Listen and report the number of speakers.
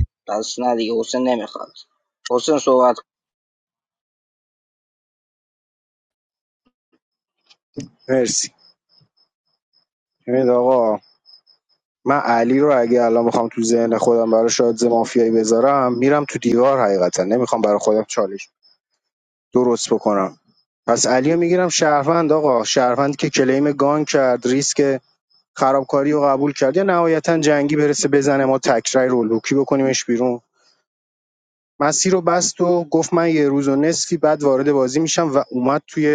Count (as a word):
two